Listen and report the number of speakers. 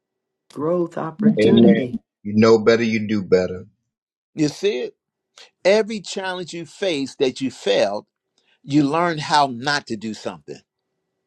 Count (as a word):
three